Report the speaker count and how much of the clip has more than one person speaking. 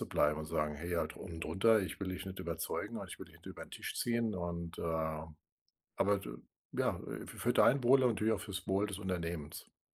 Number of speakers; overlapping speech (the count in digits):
1, no overlap